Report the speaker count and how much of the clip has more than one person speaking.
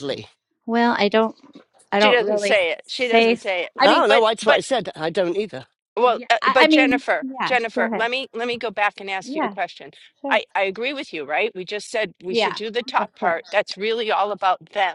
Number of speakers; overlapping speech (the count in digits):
3, about 31%